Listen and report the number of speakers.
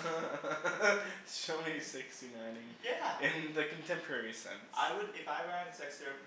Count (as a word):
two